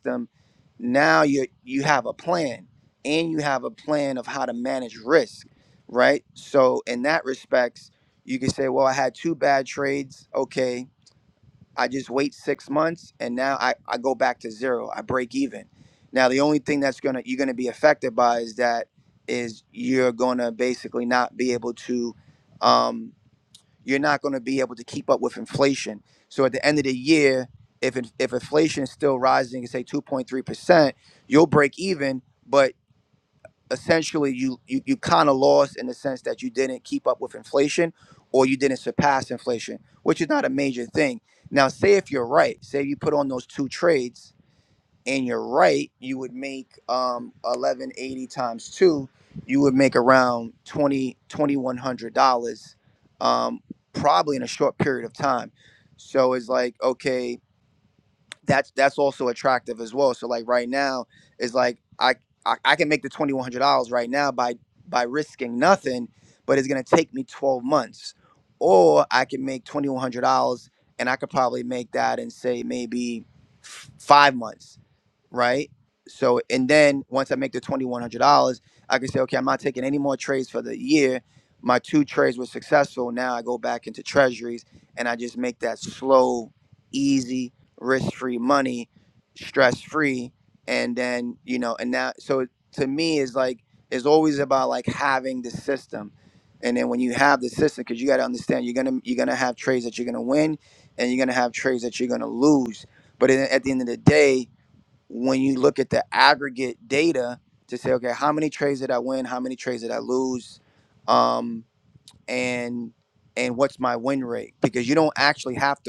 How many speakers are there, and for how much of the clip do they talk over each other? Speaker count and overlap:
1, no overlap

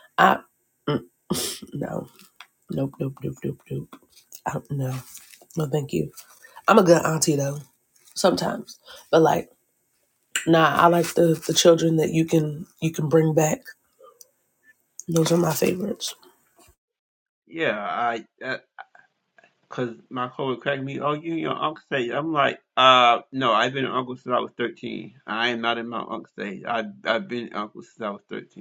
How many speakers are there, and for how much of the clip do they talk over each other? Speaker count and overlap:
2, no overlap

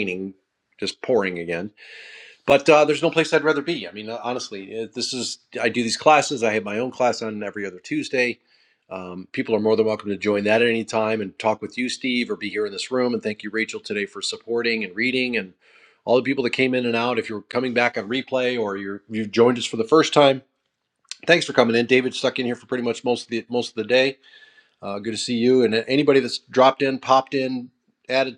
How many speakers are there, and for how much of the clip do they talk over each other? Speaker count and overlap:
1, no overlap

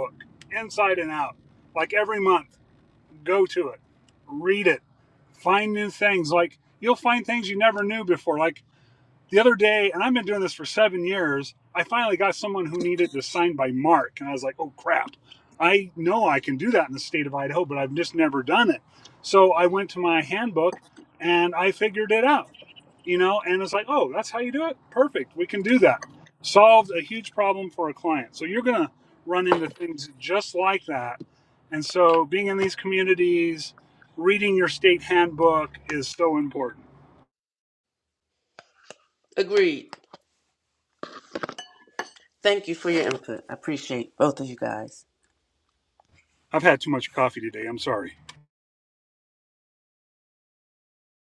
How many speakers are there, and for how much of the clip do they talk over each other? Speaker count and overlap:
2, no overlap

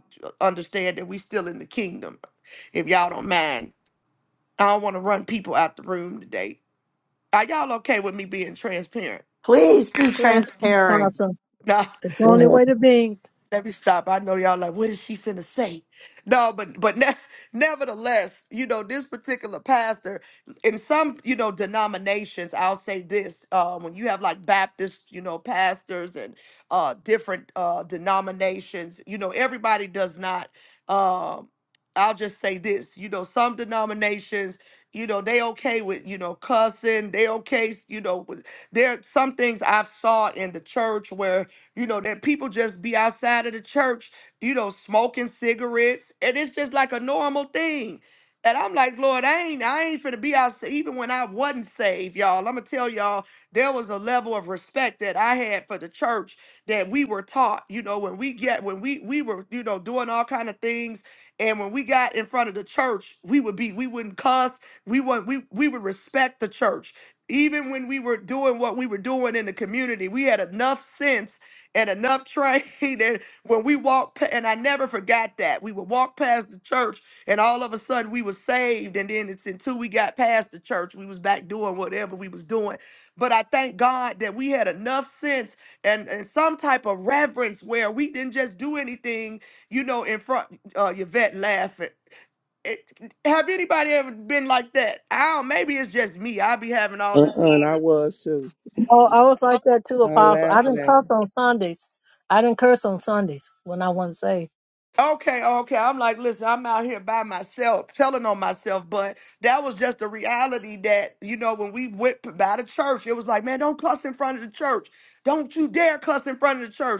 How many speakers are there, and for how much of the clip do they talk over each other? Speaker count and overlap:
4, about 2%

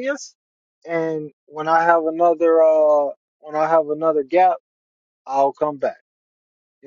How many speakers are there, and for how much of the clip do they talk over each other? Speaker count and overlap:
1, no overlap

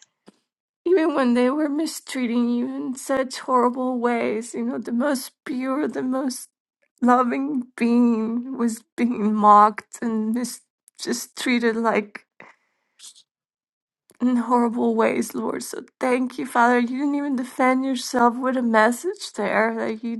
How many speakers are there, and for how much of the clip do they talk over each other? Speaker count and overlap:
1, no overlap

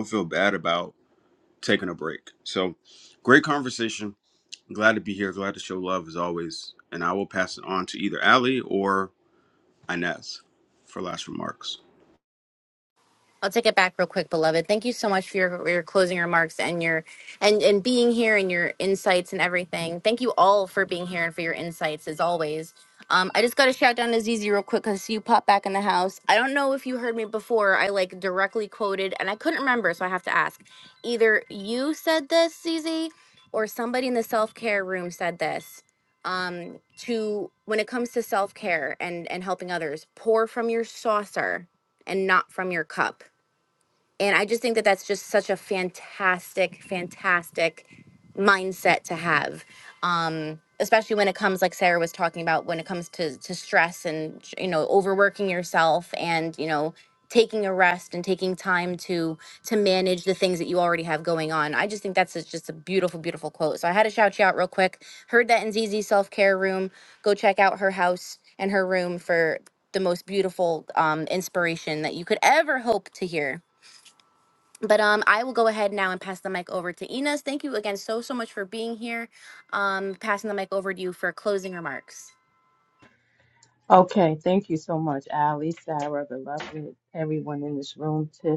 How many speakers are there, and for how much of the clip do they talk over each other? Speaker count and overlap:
3, no overlap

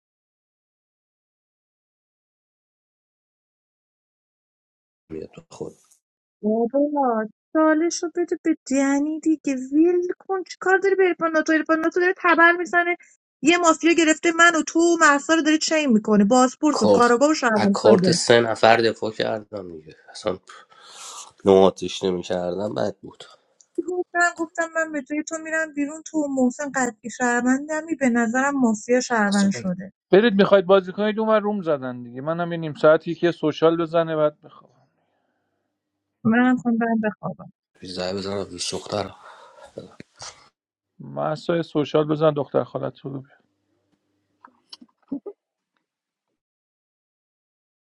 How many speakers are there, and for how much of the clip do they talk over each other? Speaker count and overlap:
3, about 2%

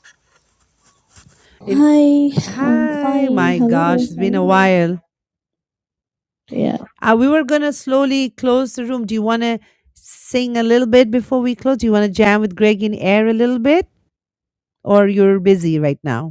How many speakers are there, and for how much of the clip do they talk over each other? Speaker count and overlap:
2, about 15%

